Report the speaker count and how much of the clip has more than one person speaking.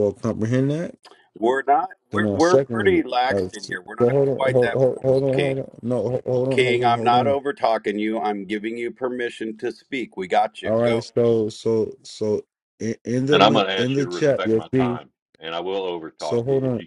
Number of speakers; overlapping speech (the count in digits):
3, about 41%